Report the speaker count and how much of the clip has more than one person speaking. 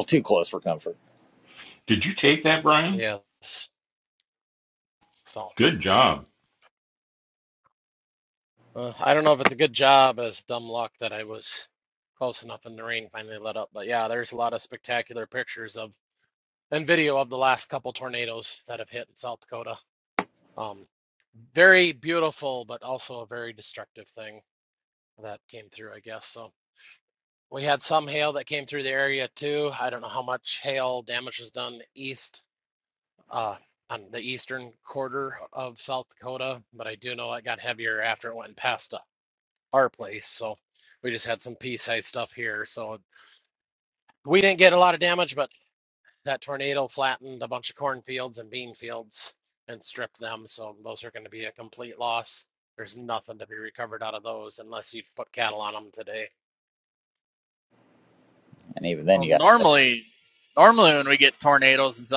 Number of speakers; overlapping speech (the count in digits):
4, about 1%